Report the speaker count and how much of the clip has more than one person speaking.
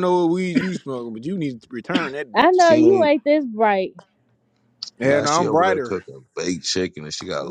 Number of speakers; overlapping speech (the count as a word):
three, about 23%